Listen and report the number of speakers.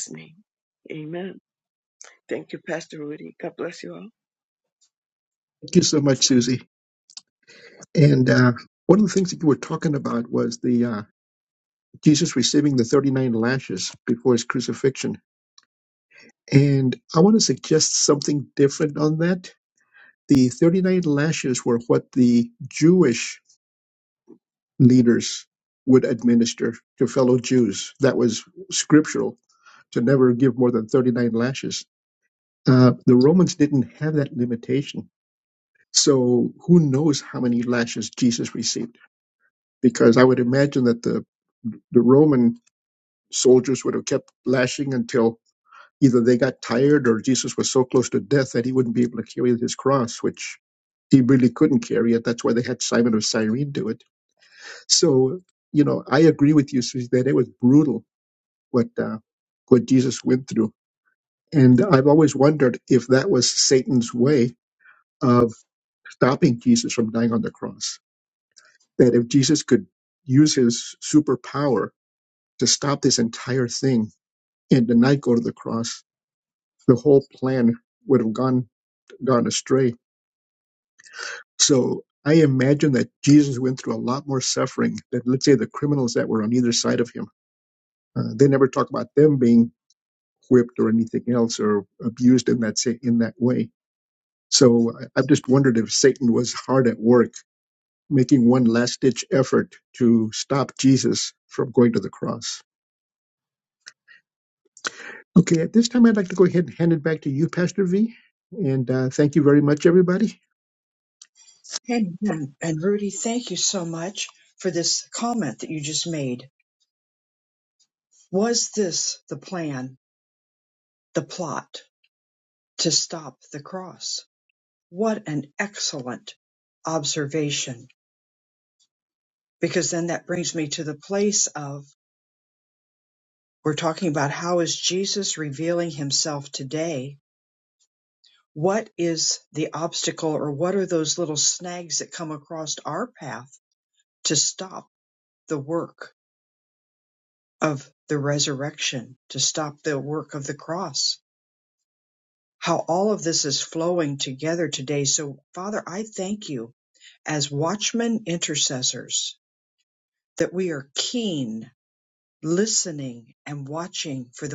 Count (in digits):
3